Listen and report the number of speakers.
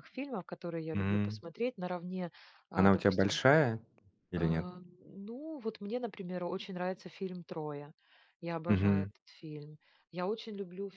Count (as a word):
two